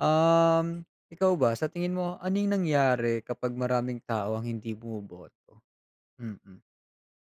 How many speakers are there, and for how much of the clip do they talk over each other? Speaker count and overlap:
one, no overlap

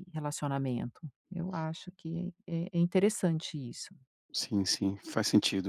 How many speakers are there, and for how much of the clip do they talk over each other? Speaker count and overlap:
two, no overlap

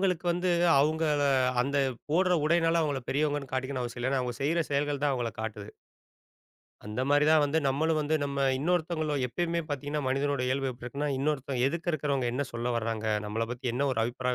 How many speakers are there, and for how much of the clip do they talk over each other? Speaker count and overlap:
one, no overlap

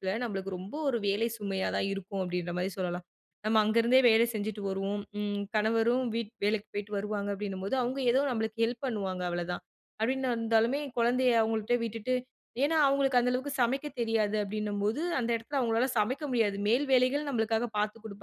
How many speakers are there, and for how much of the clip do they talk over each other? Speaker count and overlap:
one, no overlap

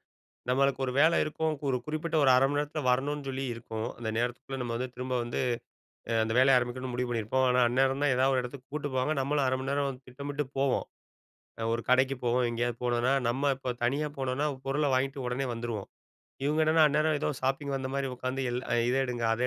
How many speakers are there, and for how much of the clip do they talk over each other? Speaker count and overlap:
one, no overlap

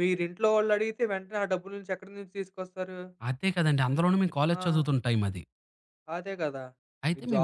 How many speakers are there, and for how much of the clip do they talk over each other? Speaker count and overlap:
two, about 9%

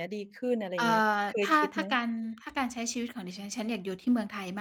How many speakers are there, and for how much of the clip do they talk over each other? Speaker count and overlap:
two, about 25%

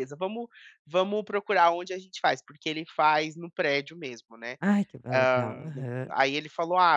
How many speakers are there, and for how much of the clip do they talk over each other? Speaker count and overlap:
two, about 11%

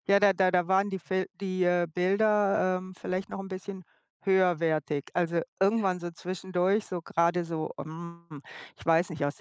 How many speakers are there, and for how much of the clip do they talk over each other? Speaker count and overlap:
one, no overlap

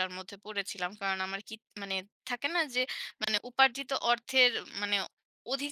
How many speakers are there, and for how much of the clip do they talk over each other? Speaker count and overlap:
one, no overlap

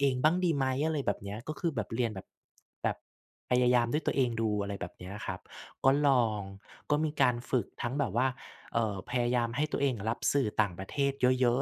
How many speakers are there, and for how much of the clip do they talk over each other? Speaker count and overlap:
one, no overlap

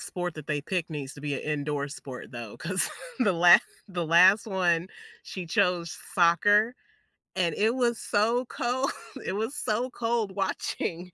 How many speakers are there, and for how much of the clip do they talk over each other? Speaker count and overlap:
one, no overlap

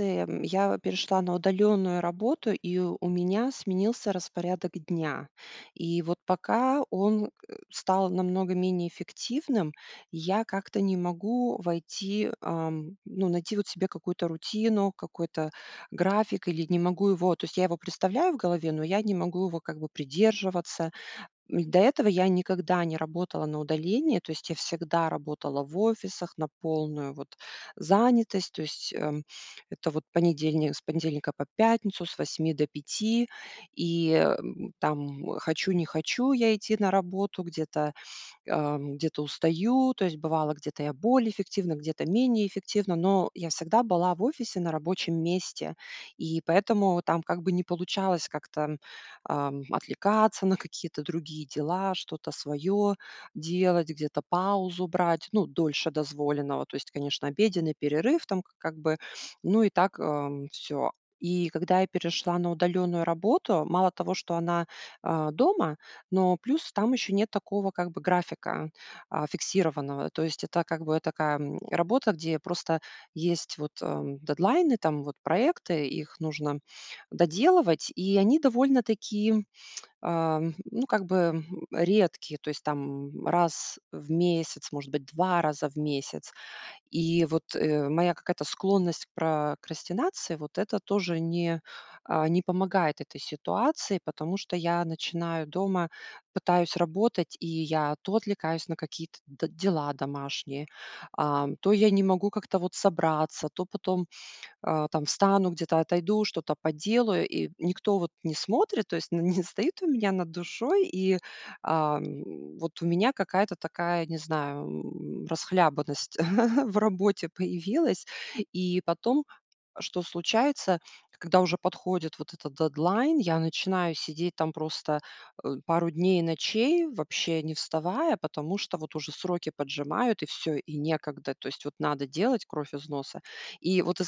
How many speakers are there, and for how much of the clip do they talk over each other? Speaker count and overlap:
one, no overlap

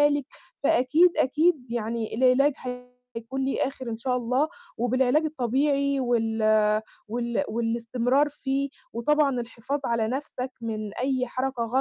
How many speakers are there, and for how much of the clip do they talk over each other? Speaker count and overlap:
one, no overlap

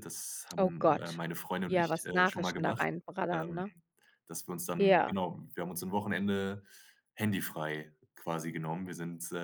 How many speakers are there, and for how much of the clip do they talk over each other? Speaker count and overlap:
two, about 25%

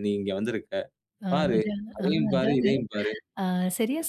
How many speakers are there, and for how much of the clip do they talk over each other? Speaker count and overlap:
two, about 36%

